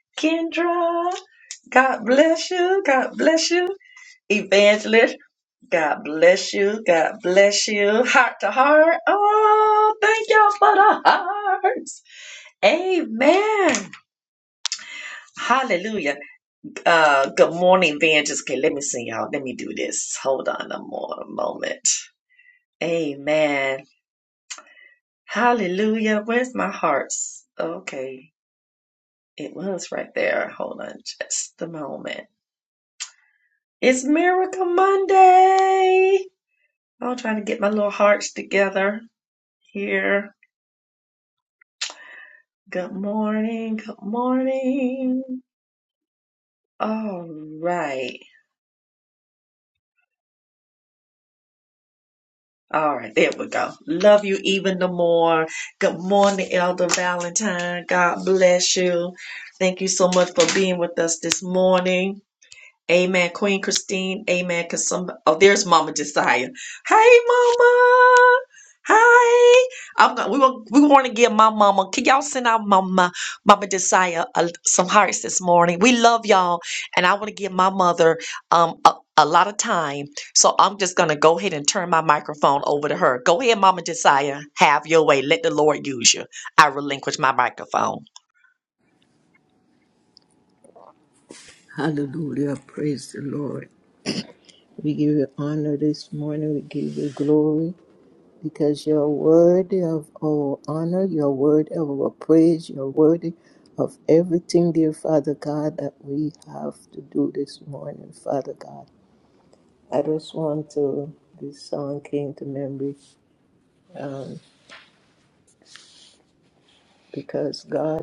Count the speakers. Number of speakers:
2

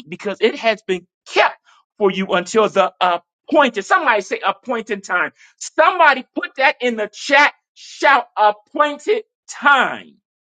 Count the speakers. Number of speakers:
1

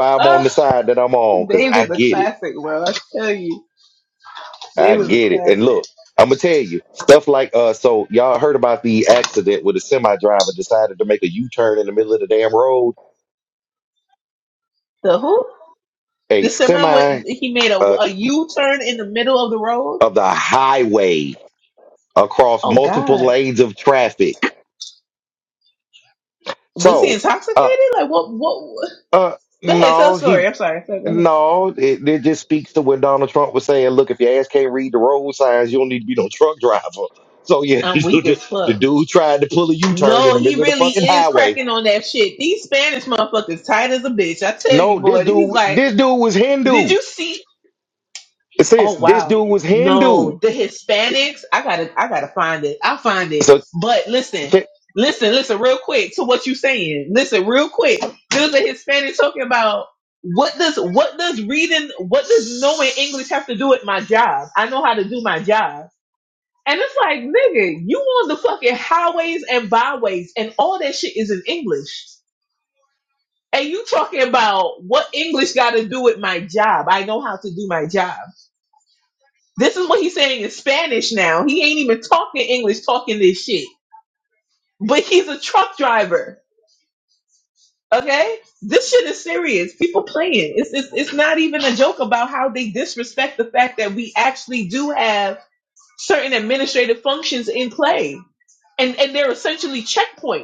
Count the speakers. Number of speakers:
2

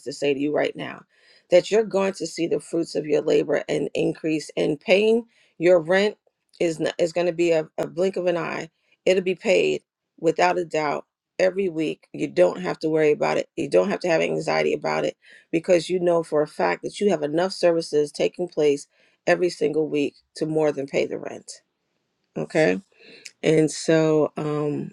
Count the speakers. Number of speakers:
1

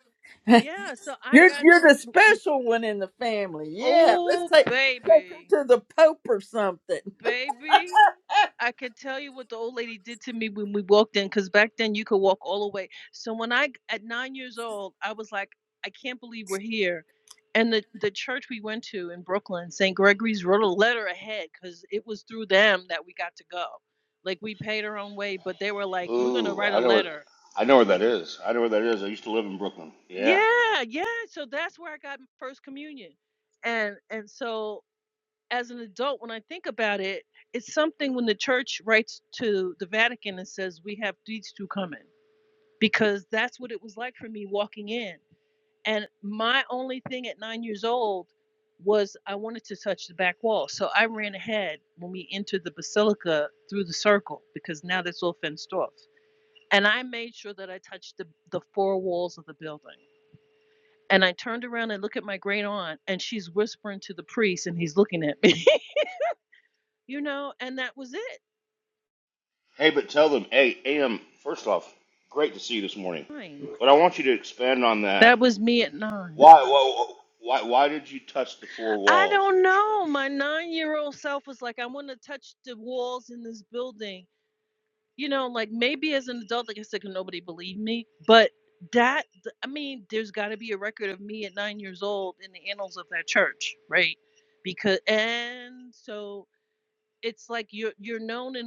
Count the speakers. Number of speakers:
3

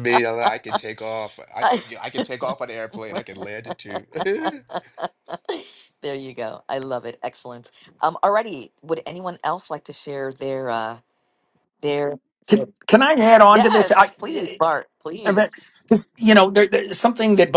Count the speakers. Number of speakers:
3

